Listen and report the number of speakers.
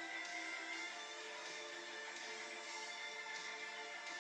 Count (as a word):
zero